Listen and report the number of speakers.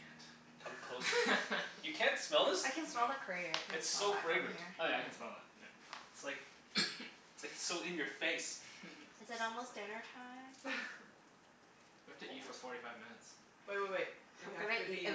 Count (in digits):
4